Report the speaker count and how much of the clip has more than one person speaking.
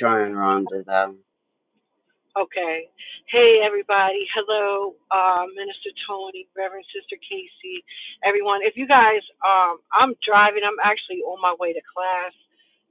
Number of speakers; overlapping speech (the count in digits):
2, no overlap